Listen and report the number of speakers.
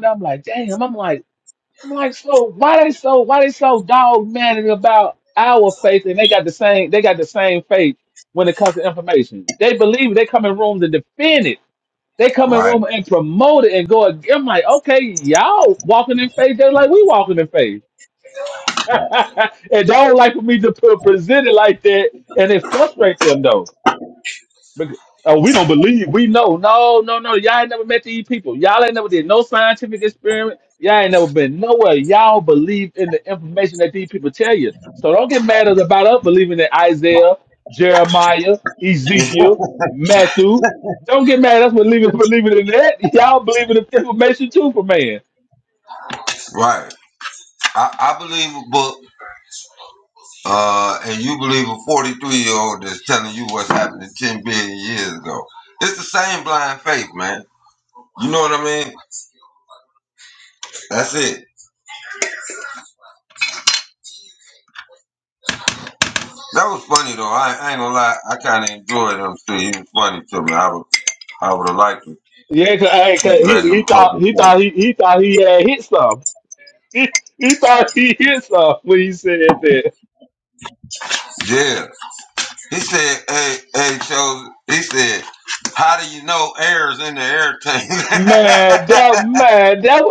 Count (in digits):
2